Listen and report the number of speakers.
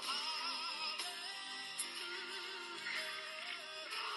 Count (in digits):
0